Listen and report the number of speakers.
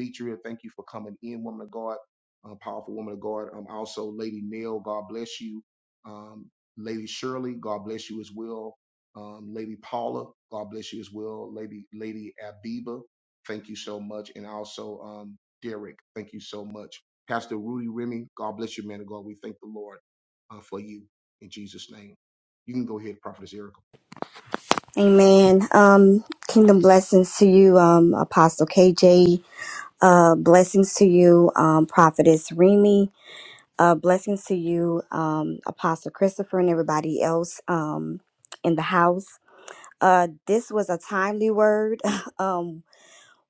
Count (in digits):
2